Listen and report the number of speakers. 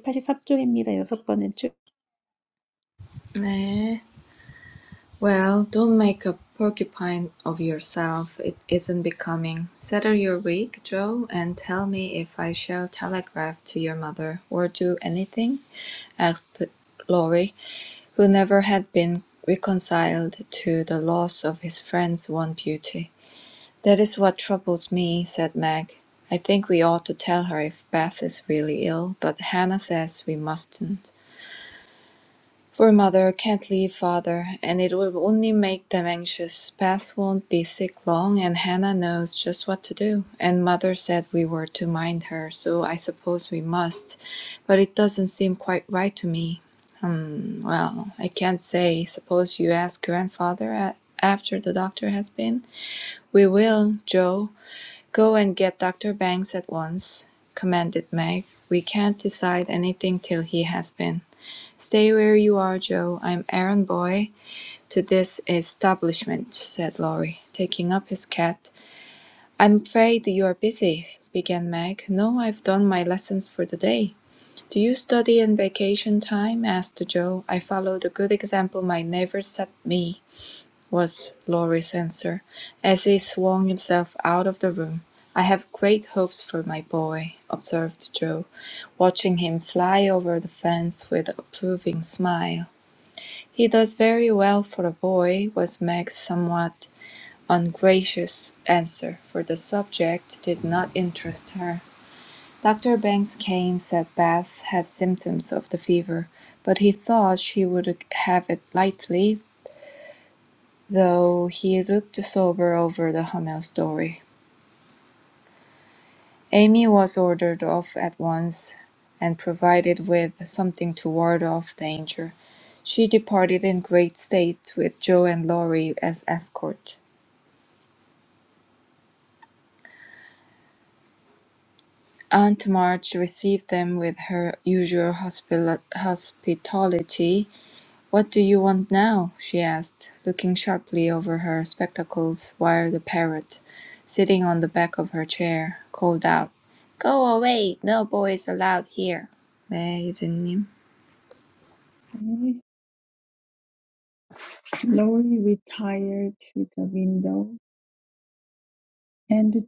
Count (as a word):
three